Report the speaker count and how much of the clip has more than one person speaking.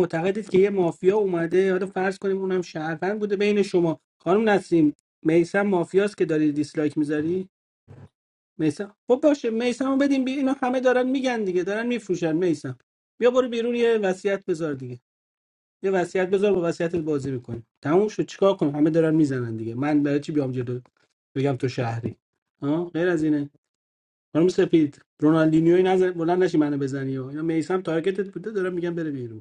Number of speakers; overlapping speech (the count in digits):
1, no overlap